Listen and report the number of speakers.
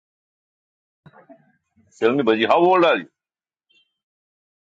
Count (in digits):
1